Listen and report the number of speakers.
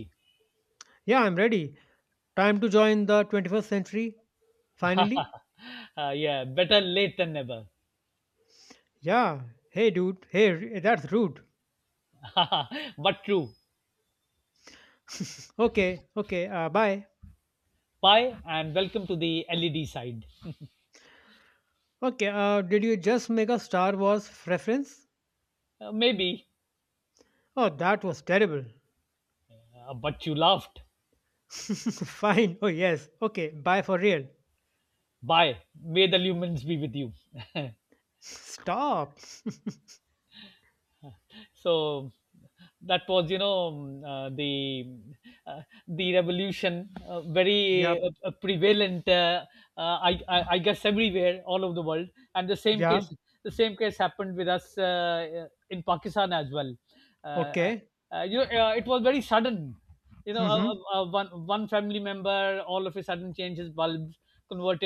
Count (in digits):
2